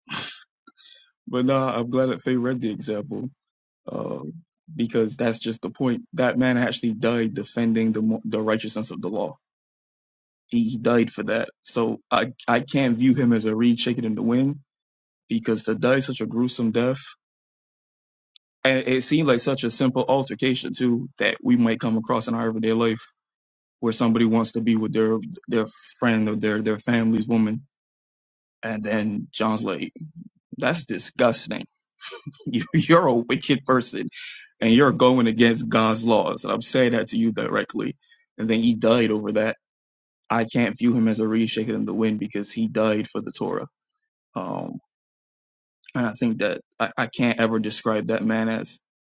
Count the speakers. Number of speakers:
1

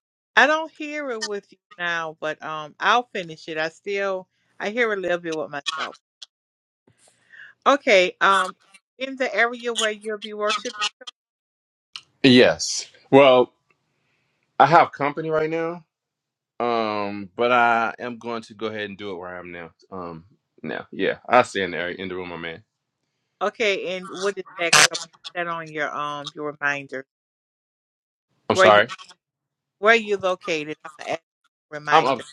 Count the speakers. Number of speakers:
2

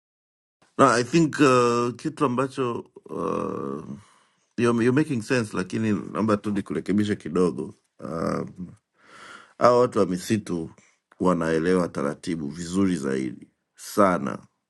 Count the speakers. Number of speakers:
1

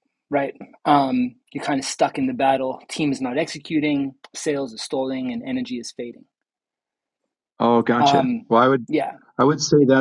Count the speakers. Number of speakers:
2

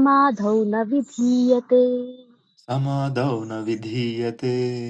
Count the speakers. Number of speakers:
2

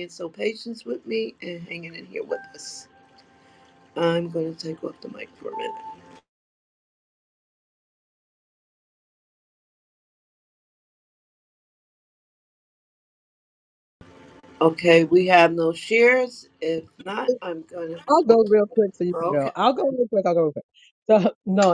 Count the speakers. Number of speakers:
2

